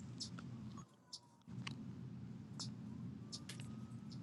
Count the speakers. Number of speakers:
0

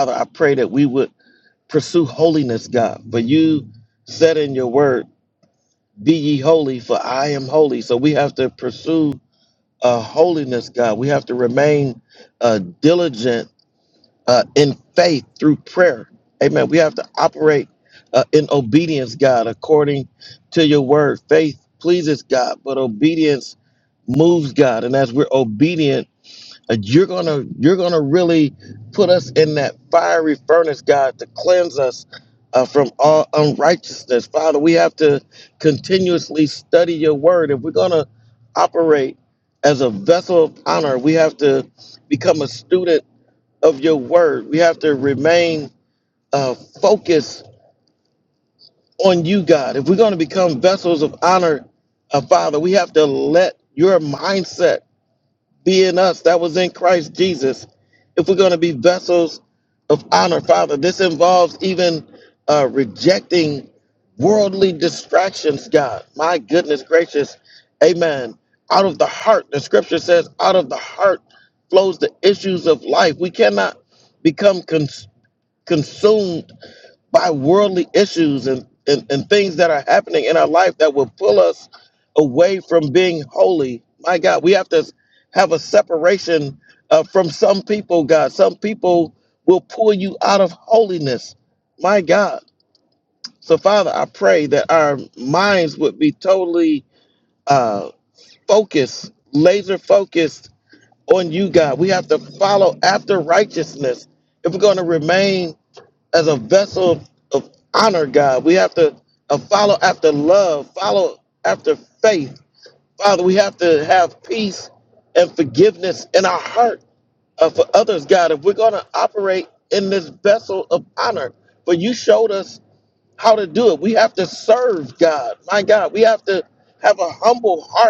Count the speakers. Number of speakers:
1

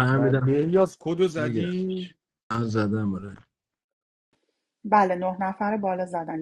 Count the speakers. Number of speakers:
3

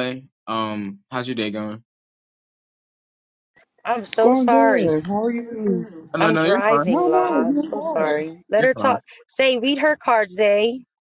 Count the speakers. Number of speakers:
3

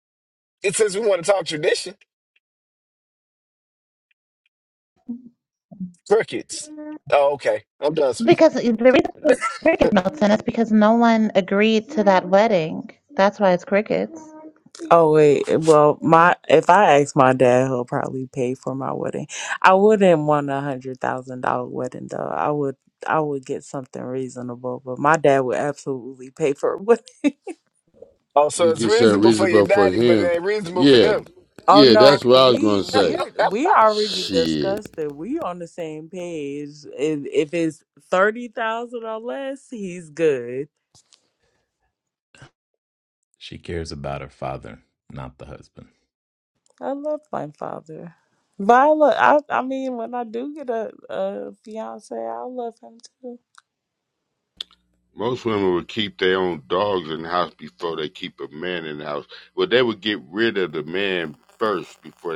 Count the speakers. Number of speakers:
5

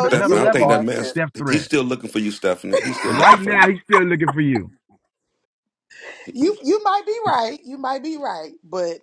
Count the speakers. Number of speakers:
3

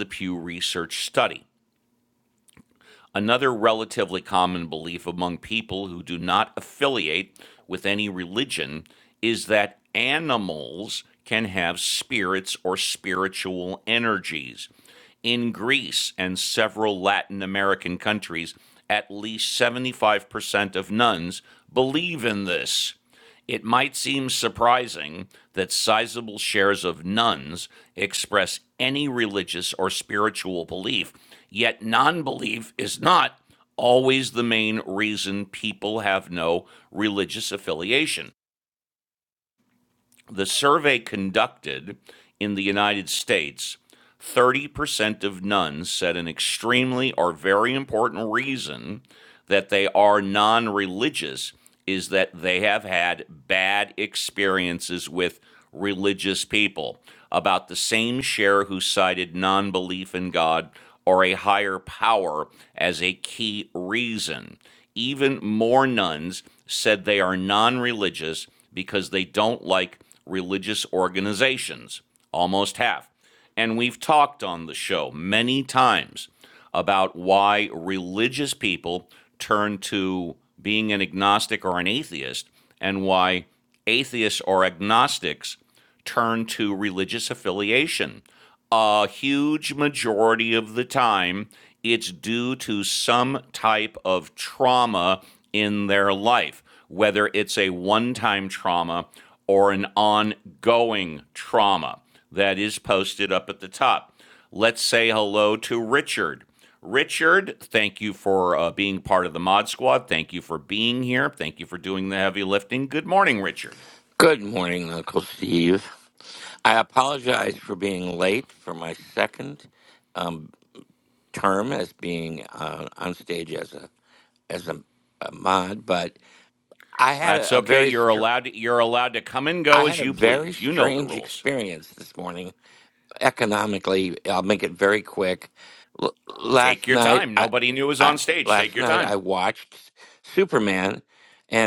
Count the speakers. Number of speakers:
2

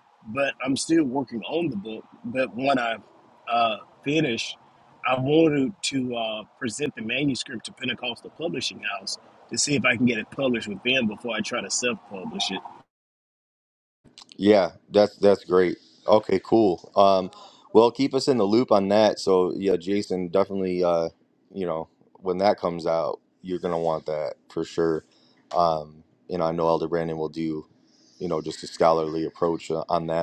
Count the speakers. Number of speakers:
2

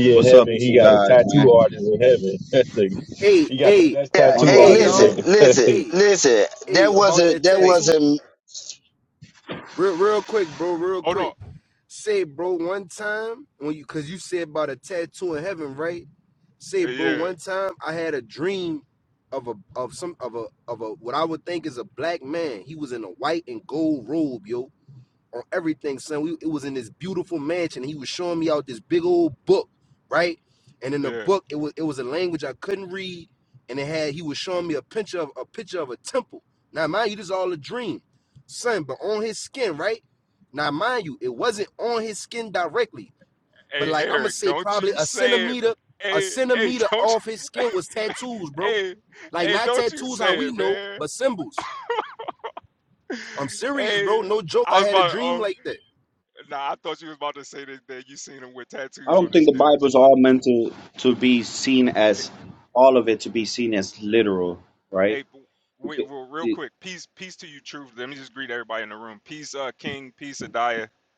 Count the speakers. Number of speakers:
5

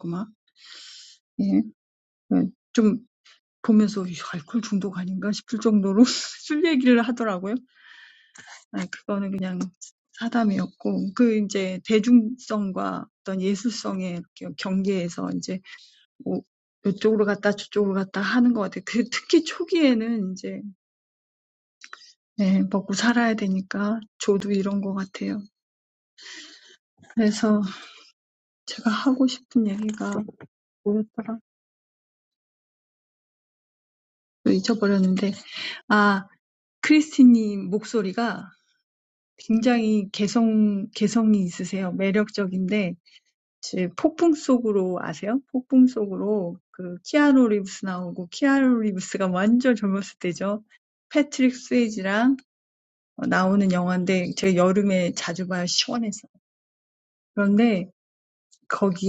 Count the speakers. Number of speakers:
1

